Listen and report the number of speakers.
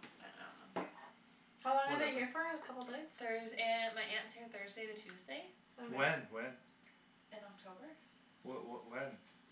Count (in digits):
3